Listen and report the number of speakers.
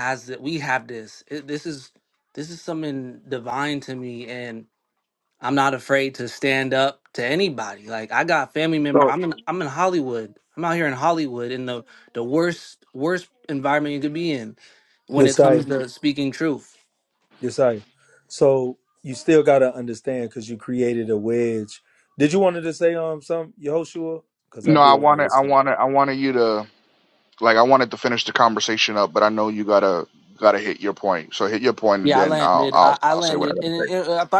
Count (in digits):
3